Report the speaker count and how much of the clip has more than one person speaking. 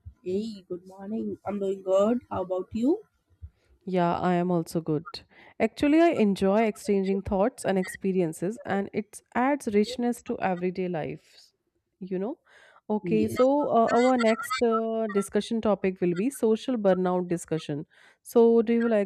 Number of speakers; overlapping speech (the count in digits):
2, about 2%